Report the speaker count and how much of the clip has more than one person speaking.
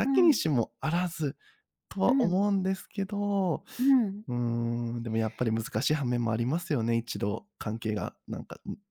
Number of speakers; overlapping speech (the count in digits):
2, about 7%